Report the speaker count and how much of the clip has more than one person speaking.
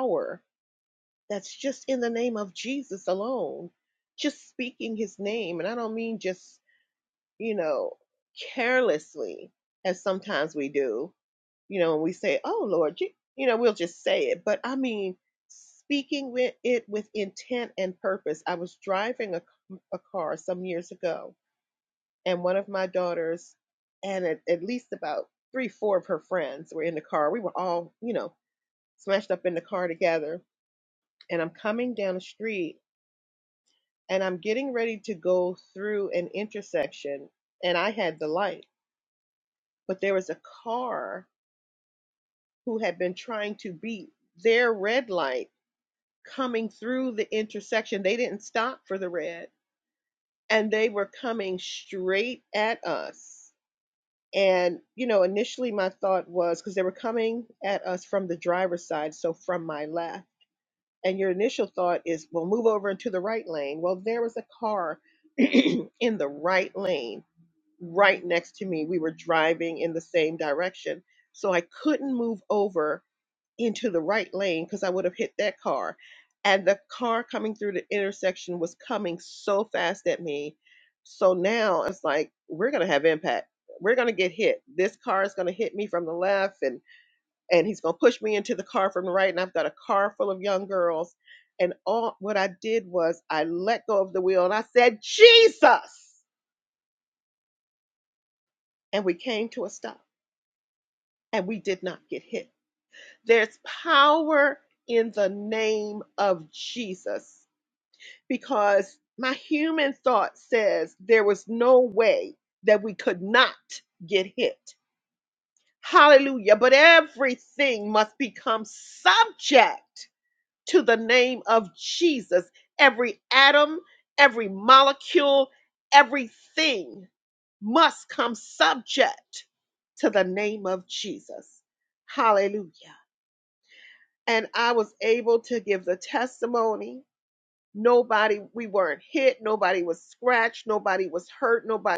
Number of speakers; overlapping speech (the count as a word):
one, no overlap